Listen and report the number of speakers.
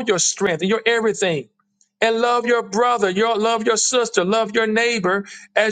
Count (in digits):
1